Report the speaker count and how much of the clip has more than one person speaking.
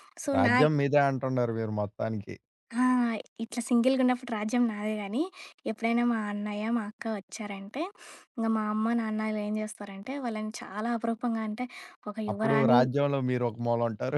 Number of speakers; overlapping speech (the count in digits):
2, about 6%